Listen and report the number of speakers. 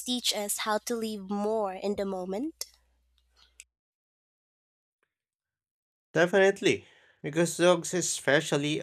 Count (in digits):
2